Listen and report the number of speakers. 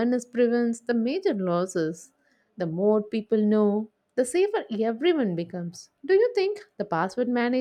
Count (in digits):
1